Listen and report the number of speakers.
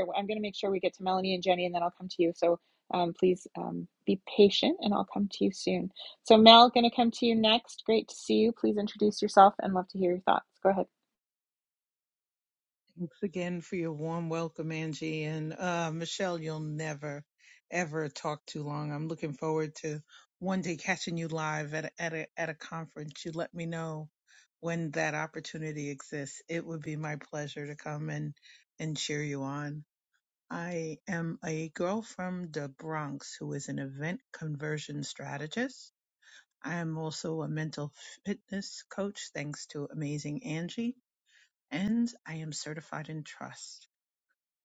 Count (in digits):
2